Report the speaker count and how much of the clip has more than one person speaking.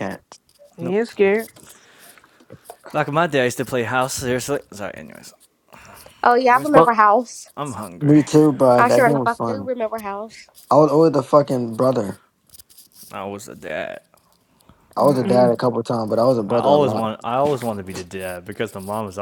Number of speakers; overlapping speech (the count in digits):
4, about 14%